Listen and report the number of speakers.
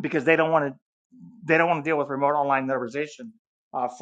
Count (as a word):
one